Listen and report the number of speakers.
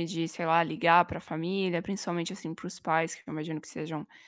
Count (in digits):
1